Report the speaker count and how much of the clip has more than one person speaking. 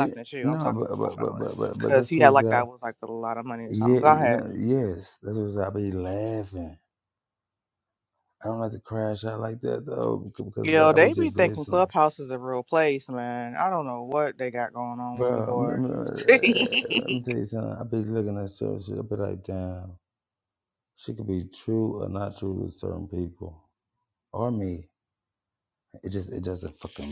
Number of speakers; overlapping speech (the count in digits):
2, about 17%